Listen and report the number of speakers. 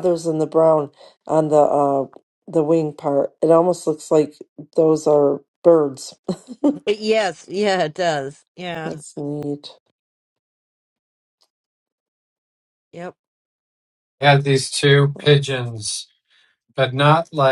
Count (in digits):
3